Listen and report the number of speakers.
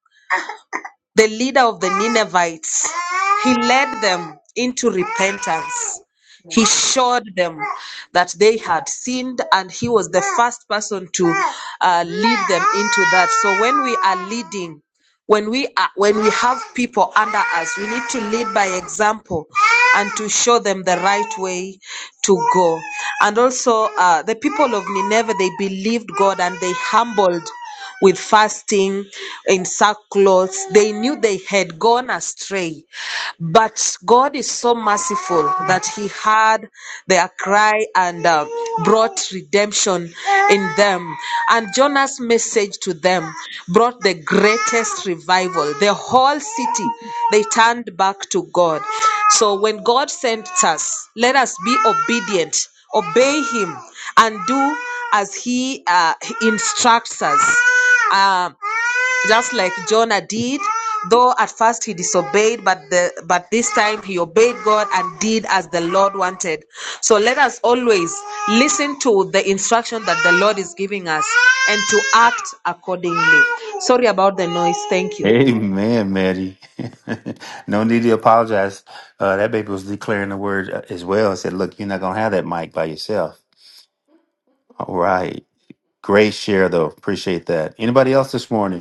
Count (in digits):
2